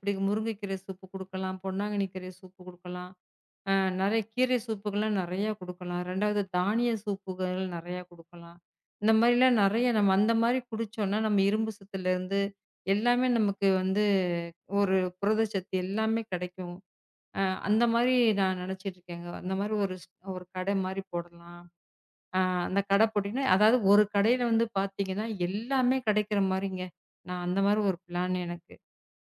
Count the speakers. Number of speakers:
1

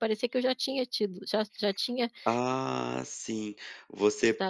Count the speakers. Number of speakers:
2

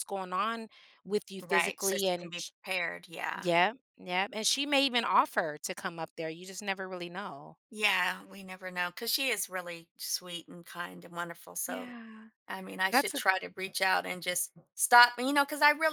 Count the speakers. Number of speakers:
2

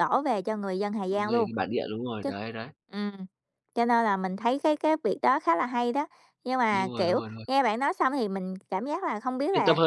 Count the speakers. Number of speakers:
2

